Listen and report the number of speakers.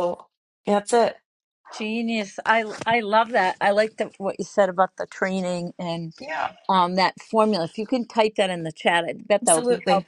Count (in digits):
2